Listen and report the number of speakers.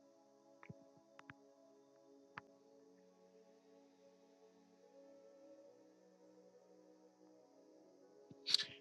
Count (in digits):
0